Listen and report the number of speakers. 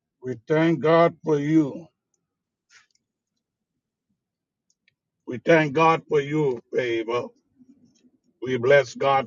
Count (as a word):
one